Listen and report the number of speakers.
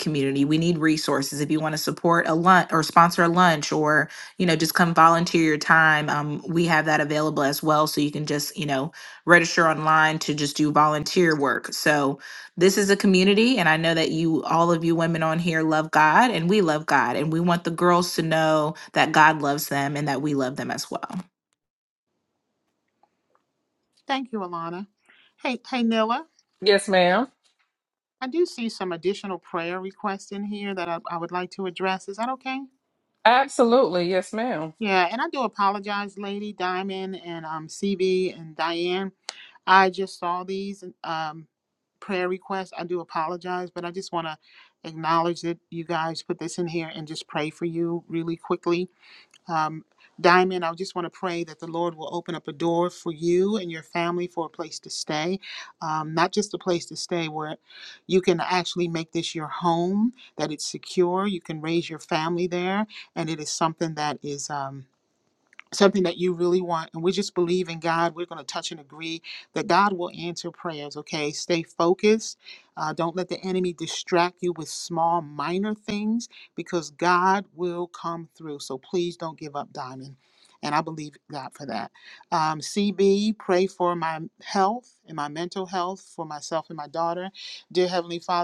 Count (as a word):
three